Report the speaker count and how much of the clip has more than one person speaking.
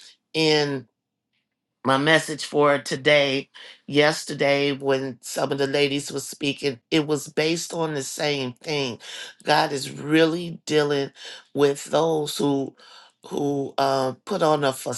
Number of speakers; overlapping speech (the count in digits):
1, no overlap